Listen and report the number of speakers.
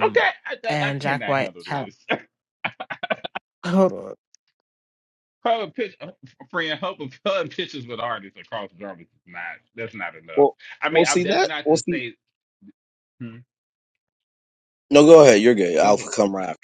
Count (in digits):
3